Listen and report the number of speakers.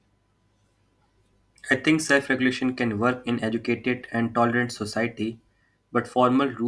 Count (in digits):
1